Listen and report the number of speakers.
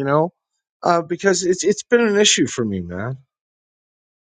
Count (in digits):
1